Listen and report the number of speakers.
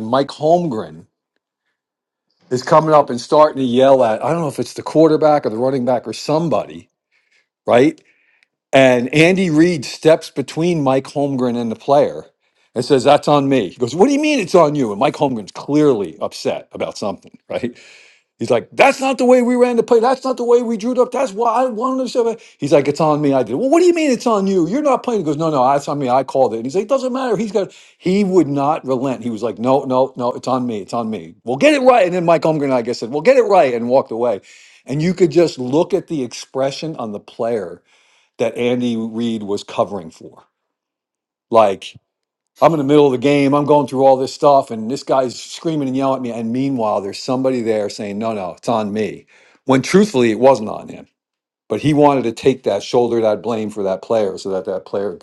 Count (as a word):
one